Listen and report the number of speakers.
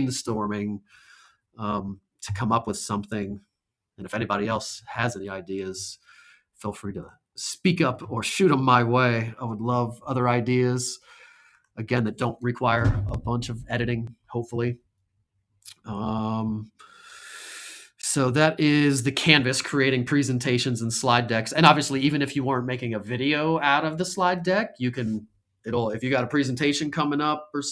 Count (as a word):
one